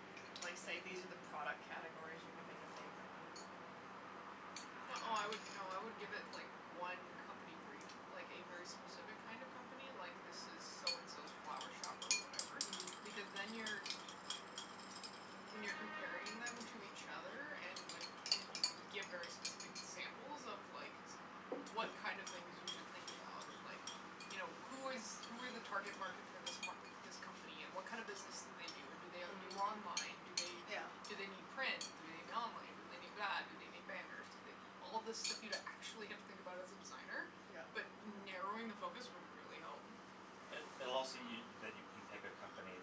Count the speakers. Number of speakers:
3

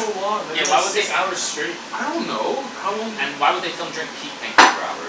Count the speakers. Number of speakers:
3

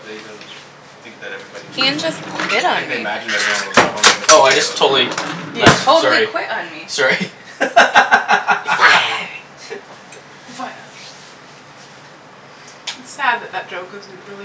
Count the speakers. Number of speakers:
4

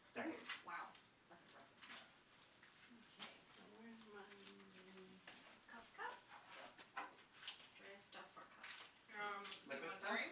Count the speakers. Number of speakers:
3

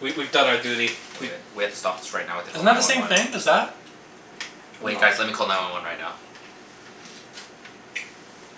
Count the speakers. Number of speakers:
3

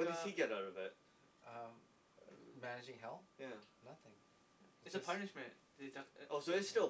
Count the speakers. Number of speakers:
3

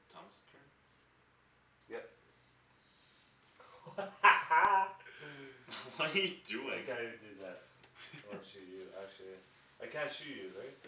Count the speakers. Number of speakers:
2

